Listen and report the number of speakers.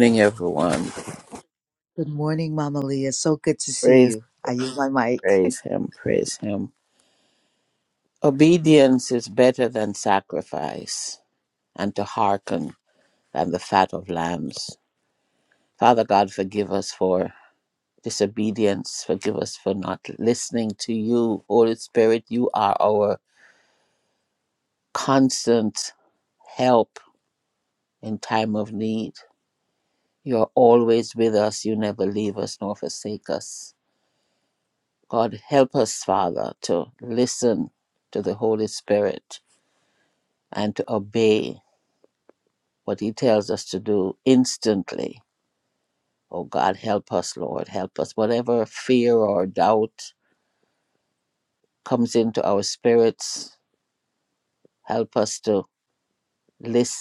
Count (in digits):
2